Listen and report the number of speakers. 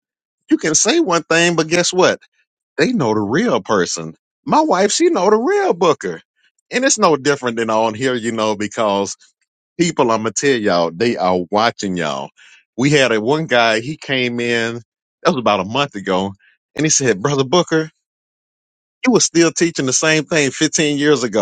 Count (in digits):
1